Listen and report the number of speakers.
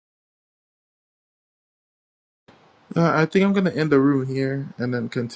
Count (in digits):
1